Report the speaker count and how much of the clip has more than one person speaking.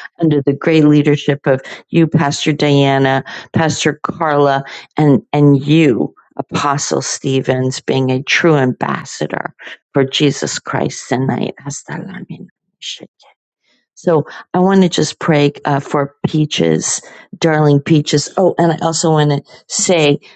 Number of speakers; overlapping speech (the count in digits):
1, no overlap